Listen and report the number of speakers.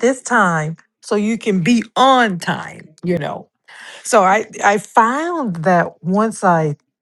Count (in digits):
1